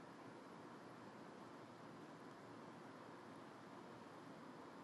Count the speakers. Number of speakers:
0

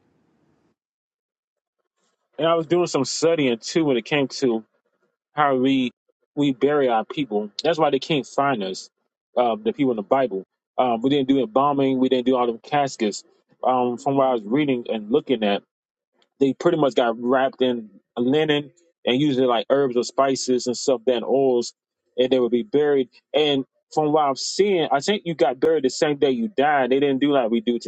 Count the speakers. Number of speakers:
1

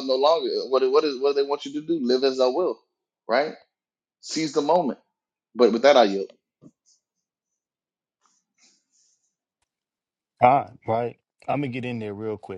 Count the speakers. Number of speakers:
2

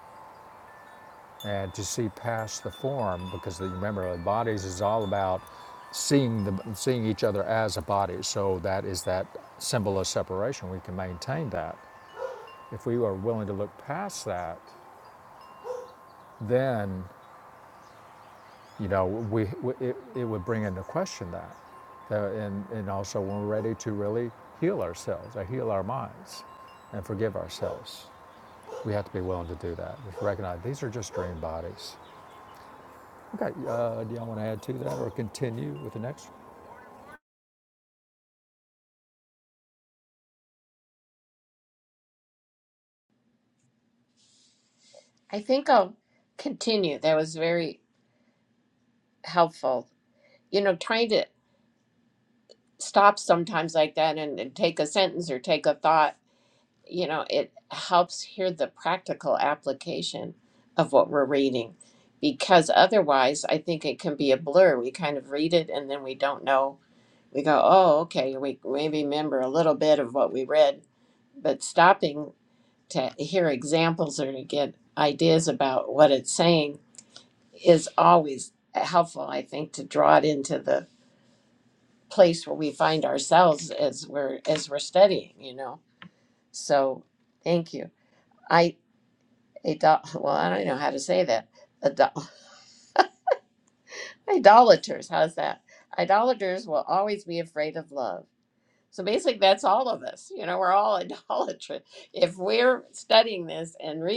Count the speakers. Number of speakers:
2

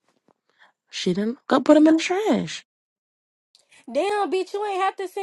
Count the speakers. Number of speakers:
2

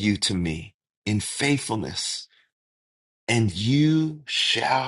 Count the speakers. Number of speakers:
1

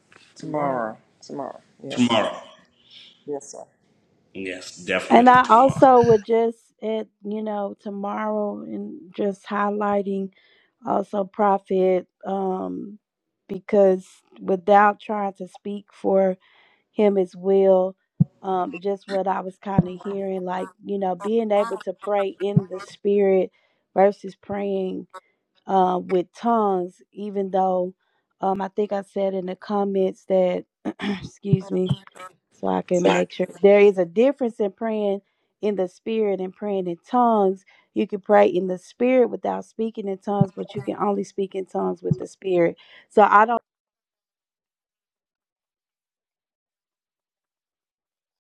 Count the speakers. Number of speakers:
3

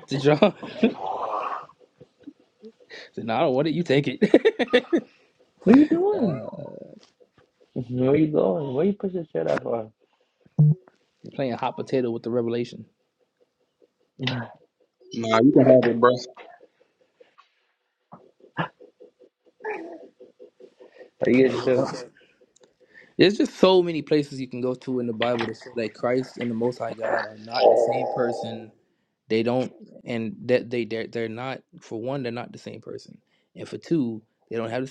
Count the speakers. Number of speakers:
3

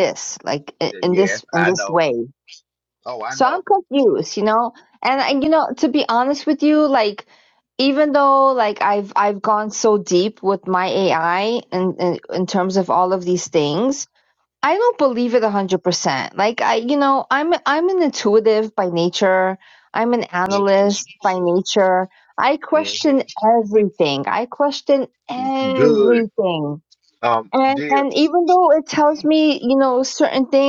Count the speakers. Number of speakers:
2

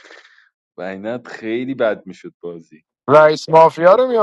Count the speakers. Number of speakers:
2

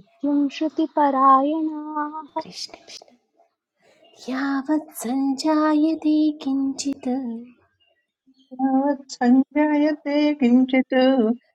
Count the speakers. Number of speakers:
3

